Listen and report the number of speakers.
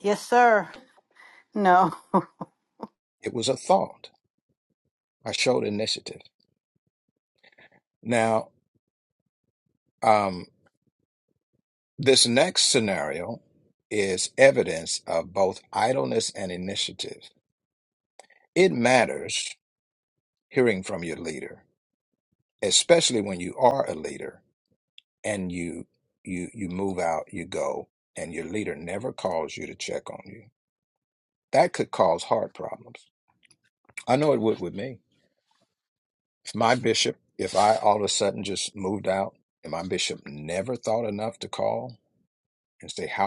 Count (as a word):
two